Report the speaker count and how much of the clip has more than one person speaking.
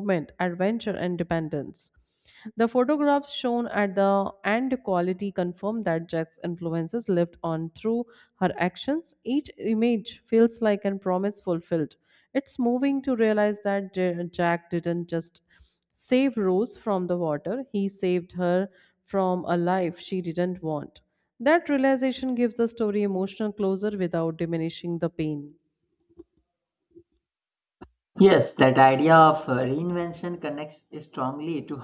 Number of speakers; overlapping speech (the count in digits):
2, no overlap